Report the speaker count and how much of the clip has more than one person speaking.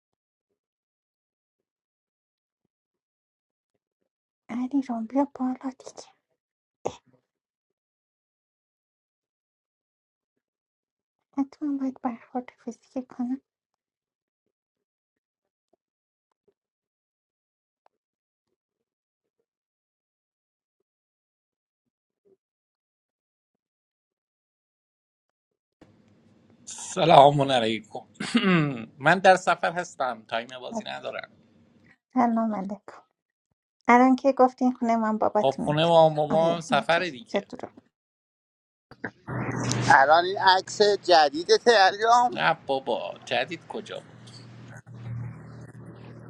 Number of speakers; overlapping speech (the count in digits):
3, about 3%